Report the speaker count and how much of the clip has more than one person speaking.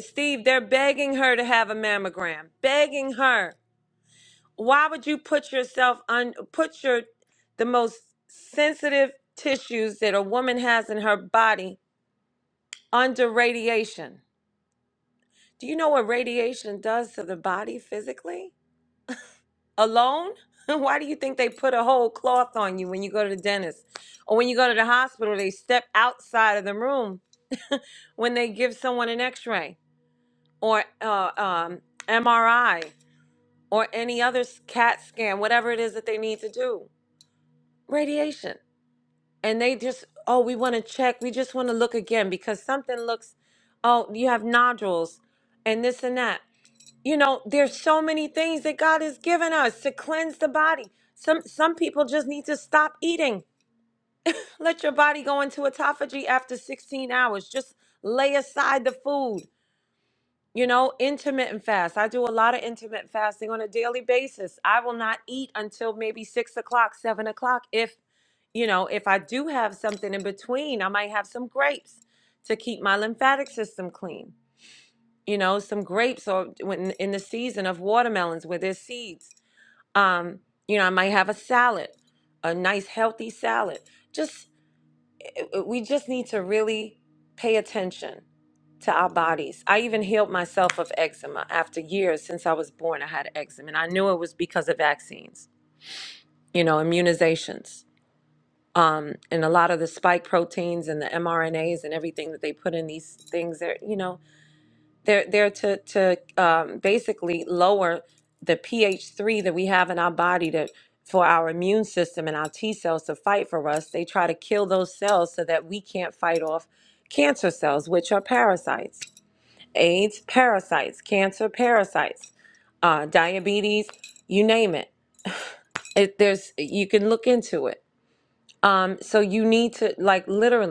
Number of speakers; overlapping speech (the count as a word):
one, no overlap